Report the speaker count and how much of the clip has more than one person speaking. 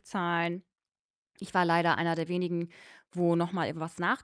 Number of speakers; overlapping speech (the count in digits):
1, no overlap